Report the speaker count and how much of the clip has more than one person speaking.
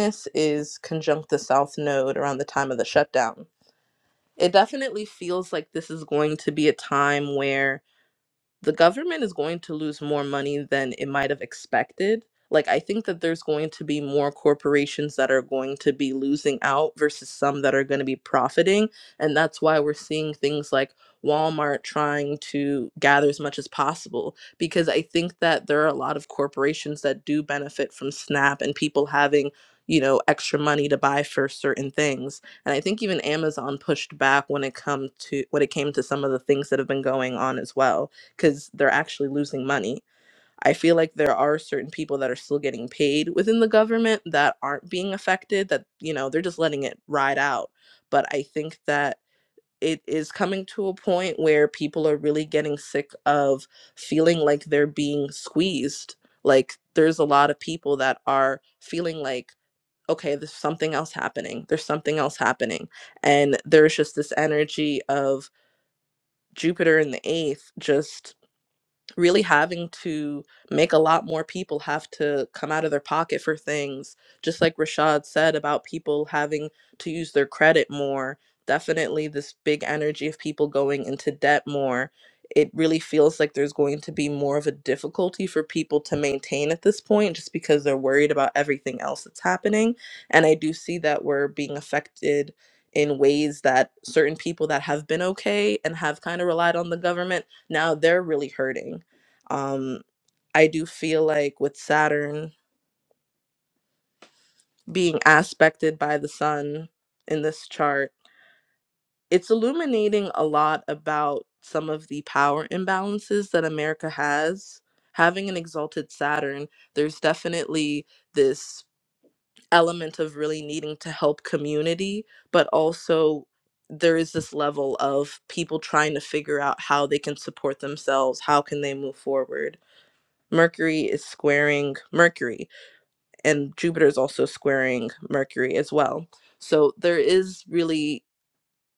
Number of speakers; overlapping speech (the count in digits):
1, no overlap